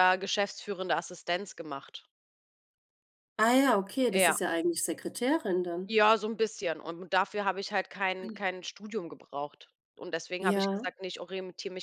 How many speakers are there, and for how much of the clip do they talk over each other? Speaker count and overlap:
2, about 6%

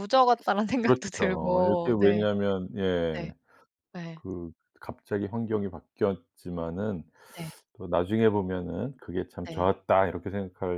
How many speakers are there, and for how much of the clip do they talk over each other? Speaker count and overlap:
2, about 16%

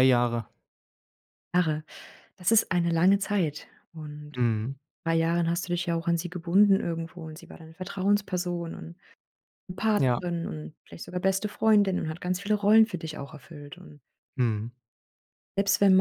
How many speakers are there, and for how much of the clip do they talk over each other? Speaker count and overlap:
2, about 1%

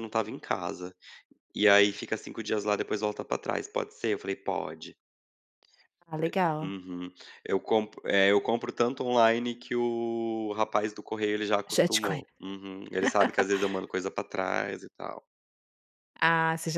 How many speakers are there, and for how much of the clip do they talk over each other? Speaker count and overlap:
2, about 4%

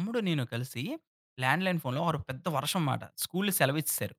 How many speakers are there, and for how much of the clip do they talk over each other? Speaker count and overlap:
1, no overlap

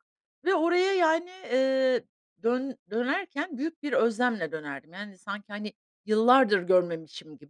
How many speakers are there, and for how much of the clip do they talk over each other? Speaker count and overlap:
1, no overlap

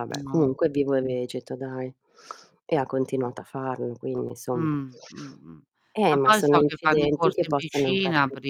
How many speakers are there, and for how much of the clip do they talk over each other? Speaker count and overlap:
2, about 38%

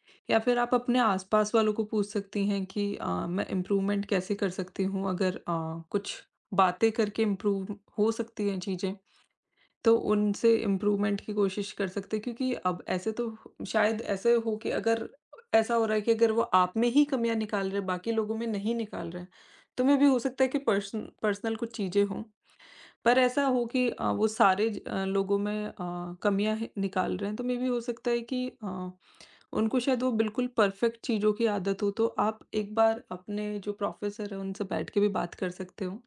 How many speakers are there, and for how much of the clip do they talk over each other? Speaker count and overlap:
1, no overlap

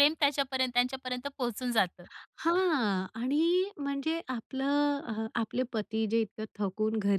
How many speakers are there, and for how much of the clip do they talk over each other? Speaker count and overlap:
2, no overlap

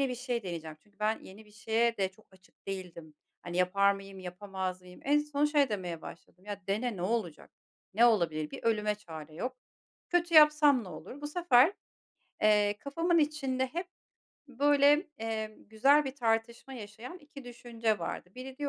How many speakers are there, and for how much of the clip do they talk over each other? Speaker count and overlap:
1, no overlap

